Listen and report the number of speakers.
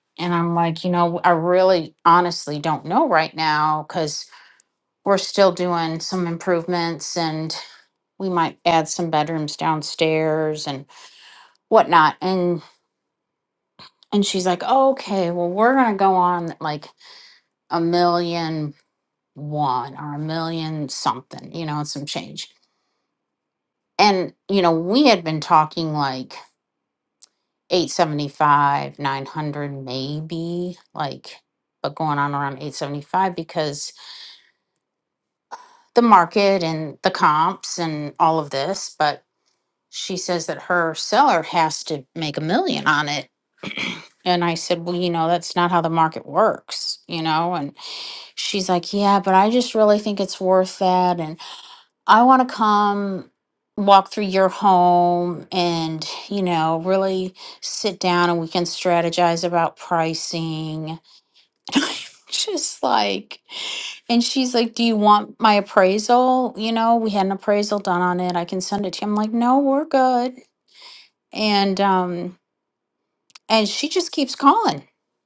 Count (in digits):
1